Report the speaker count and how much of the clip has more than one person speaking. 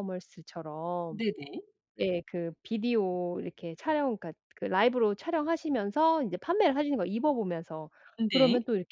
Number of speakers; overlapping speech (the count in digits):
2, about 3%